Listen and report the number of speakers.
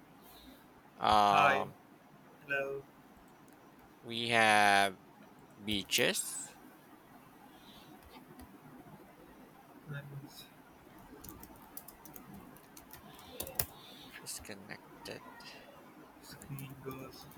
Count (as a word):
two